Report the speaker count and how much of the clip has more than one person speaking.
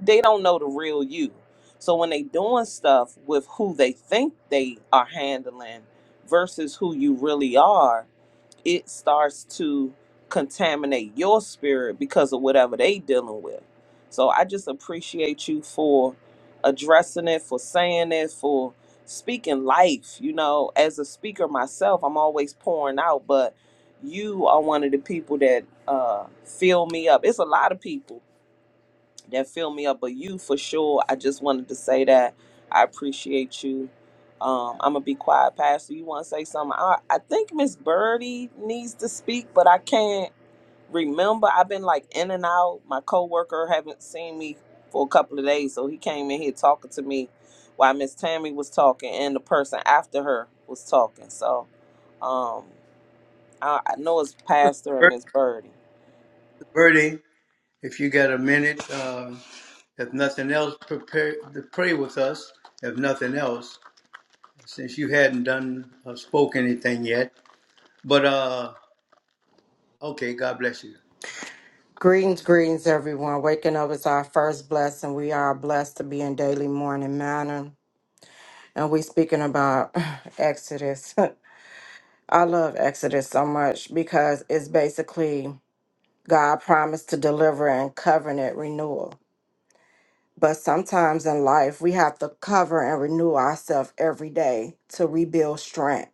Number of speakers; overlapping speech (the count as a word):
three, under 1%